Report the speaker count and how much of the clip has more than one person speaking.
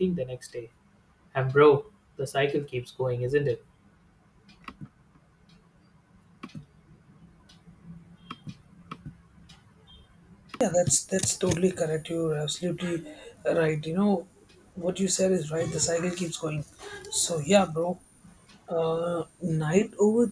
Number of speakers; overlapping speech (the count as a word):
two, no overlap